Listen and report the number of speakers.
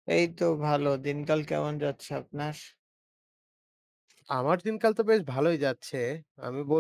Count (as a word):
two